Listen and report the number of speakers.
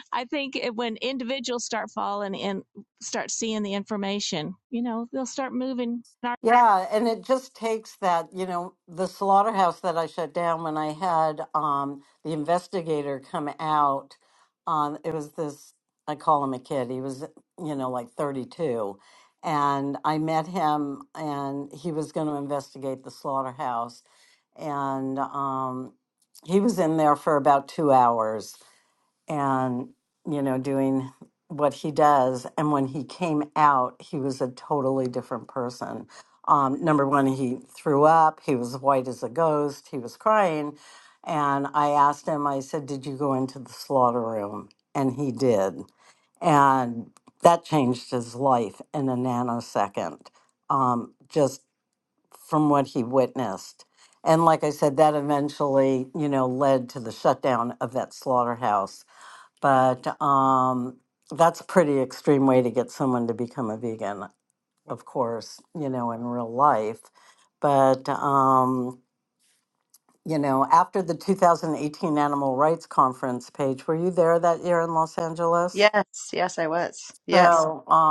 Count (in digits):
3